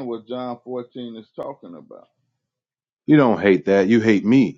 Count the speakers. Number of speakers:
two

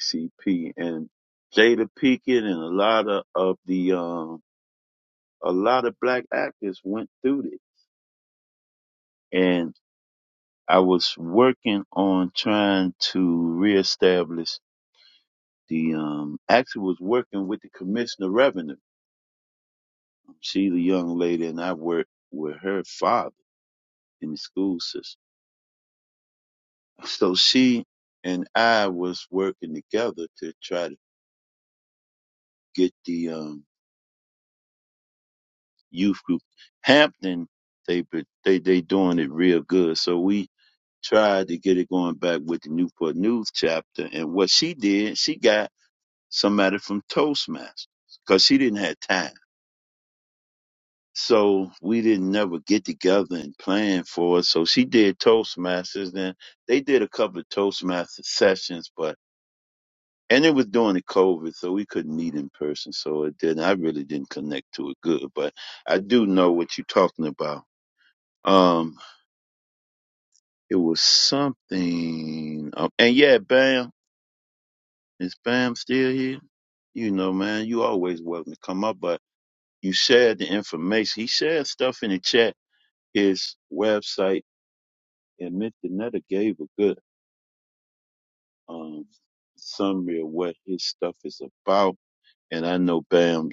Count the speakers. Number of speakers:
one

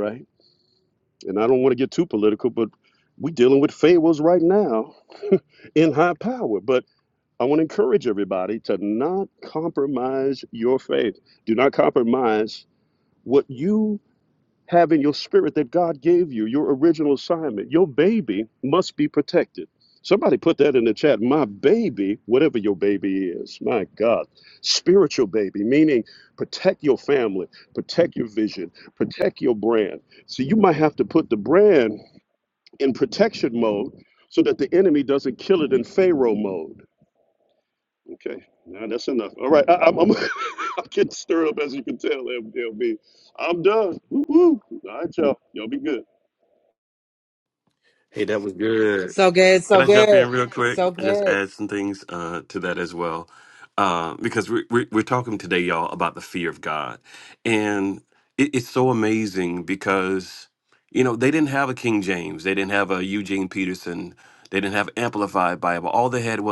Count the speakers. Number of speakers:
three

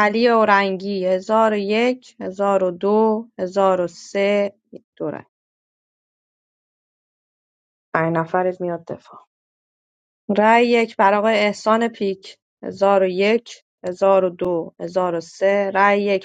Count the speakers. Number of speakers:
one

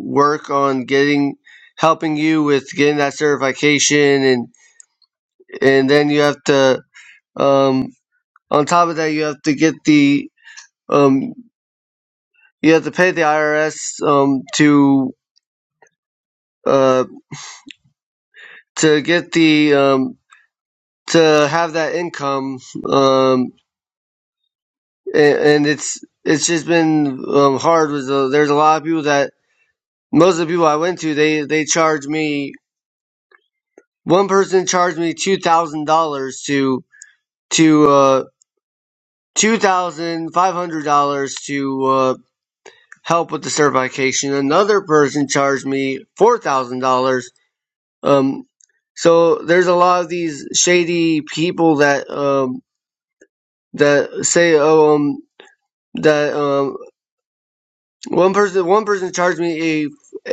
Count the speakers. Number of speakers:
one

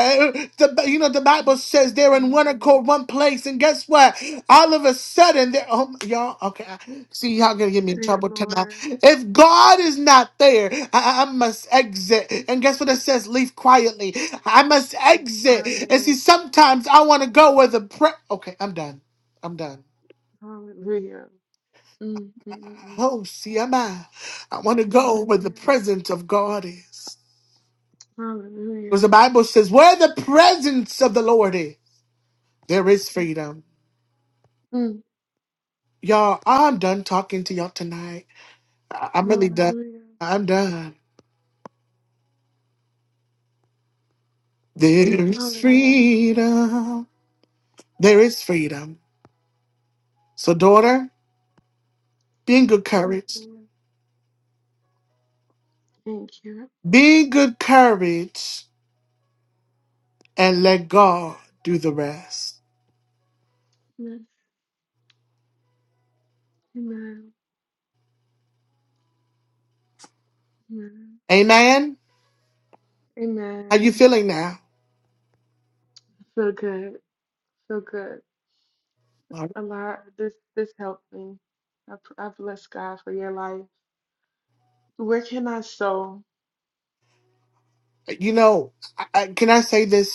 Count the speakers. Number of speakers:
two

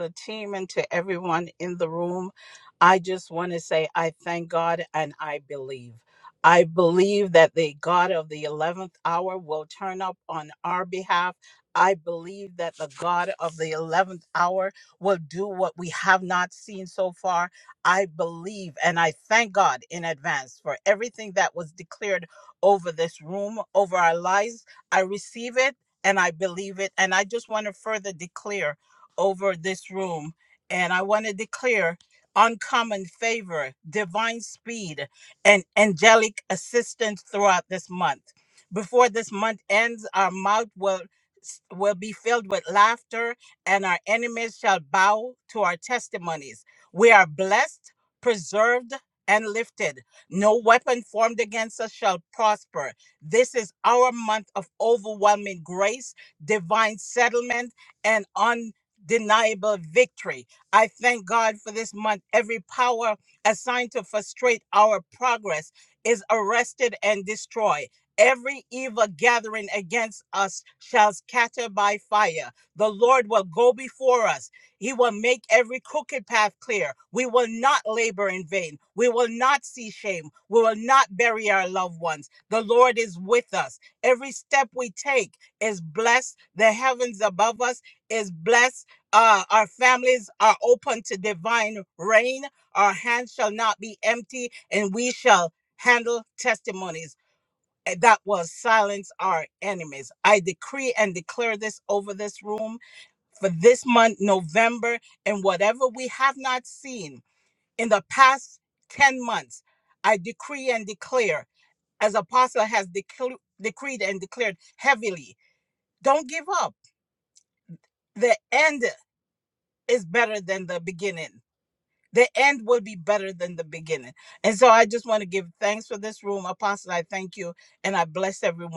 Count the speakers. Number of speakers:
one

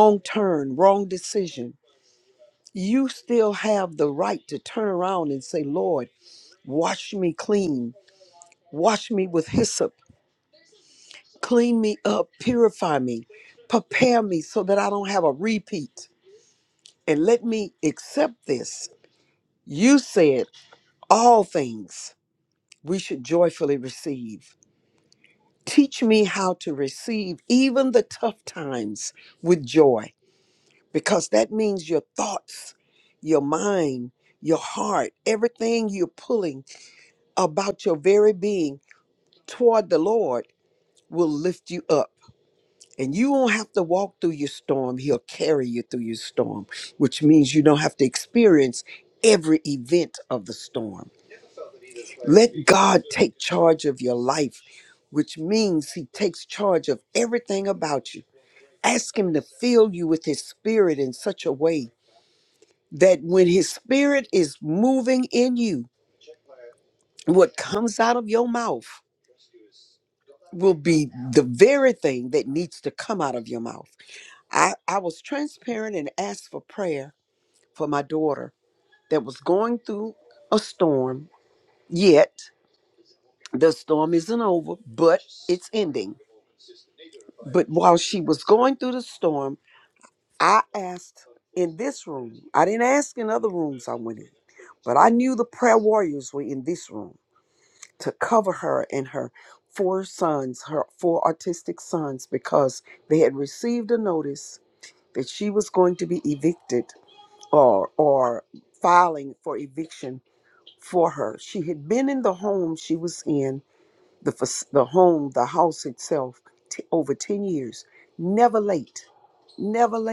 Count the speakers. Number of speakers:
one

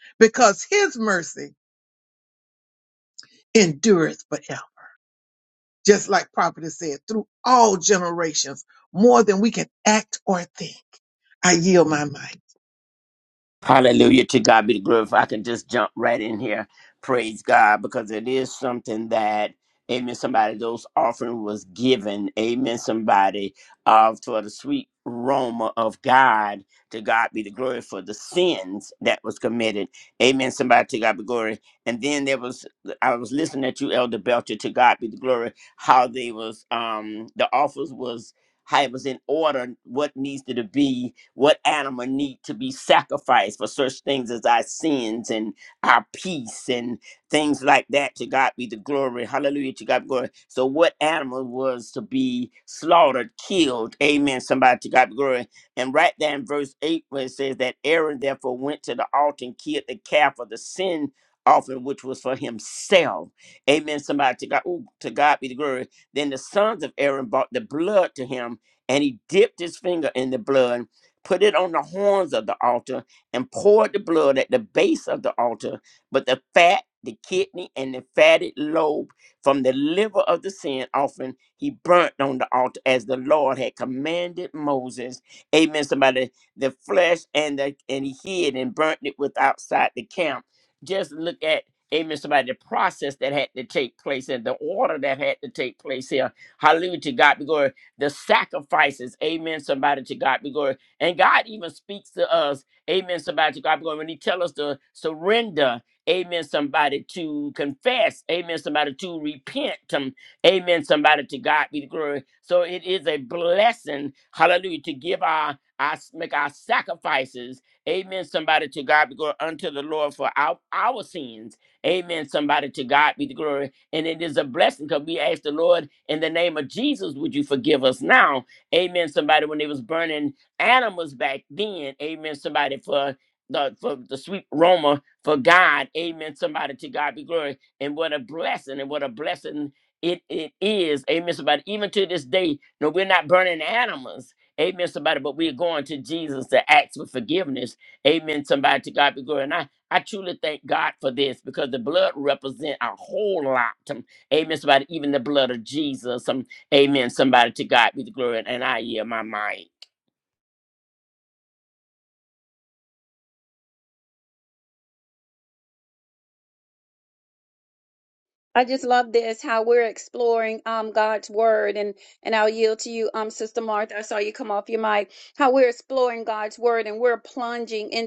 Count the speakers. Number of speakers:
three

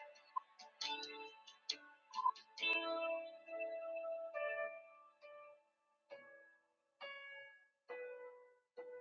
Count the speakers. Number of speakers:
zero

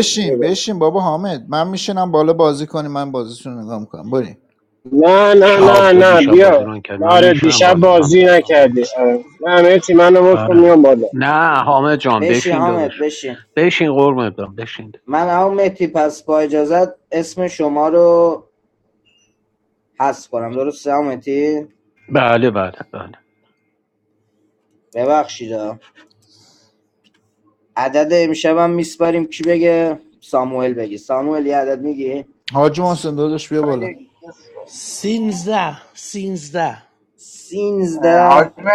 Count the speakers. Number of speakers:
six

